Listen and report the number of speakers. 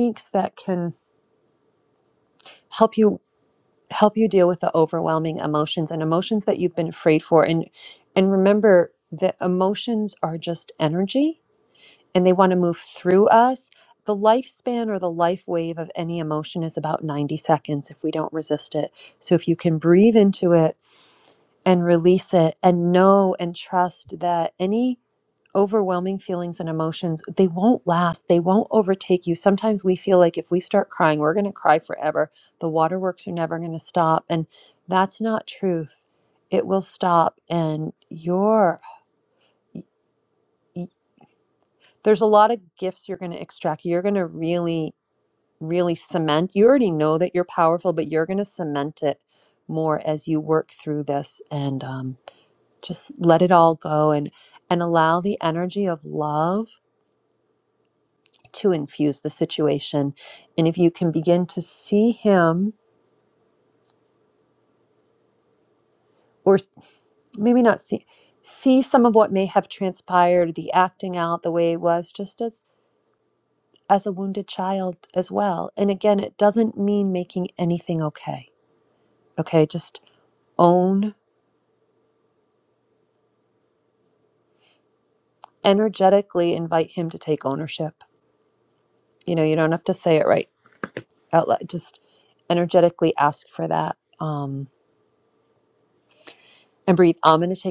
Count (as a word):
one